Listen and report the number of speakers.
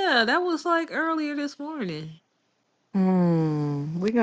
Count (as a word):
two